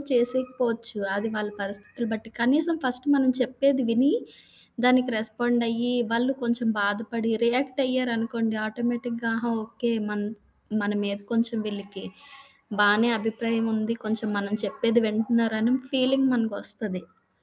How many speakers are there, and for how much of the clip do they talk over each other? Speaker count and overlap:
1, no overlap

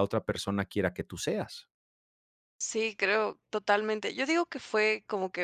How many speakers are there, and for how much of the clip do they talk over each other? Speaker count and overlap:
2, no overlap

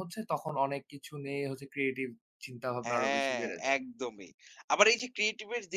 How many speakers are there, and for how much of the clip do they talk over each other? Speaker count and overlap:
2, about 16%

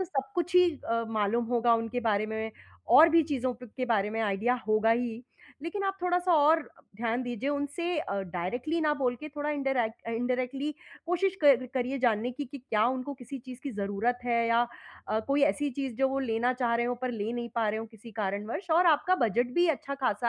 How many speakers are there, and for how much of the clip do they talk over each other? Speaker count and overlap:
1, no overlap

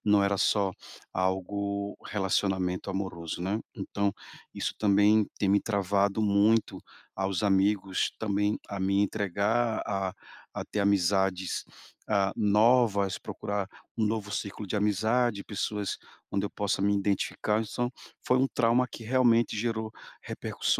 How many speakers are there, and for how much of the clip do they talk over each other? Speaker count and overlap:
1, no overlap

